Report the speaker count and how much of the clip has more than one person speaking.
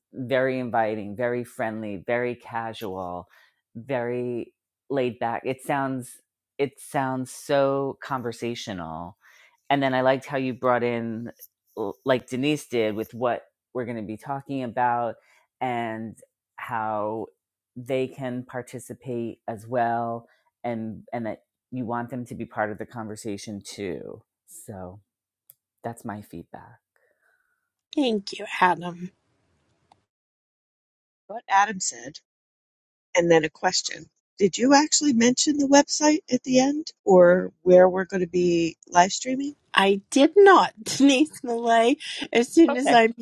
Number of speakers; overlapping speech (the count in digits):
3, about 1%